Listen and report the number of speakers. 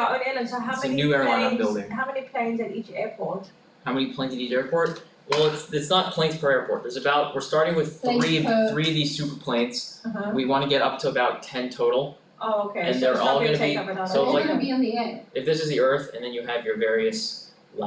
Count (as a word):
three